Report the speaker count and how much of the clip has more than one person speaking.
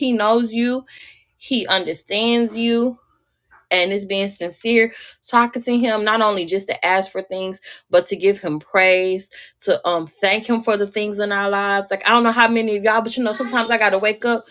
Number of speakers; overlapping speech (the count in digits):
1, no overlap